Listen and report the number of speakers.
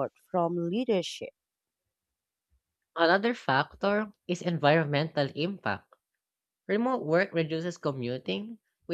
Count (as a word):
two